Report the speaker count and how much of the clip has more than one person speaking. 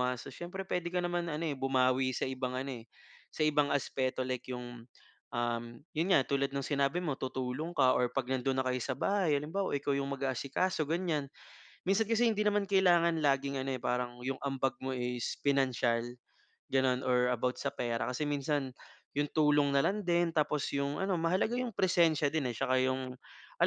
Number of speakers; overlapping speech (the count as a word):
one, no overlap